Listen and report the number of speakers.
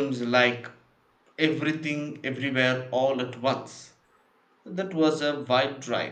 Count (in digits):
1